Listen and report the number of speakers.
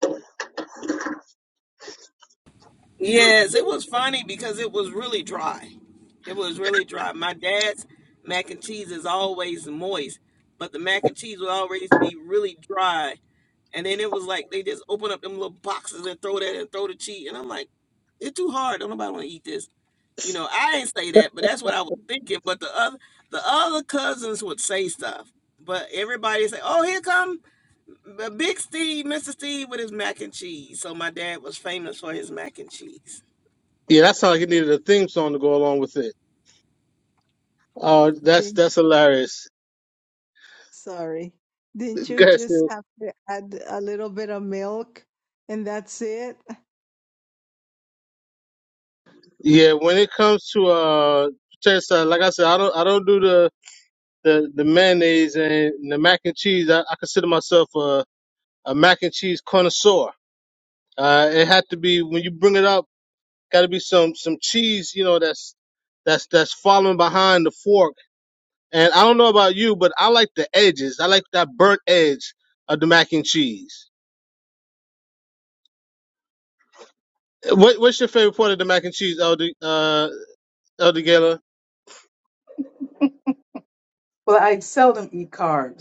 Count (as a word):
four